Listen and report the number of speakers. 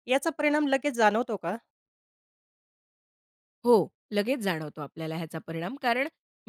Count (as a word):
two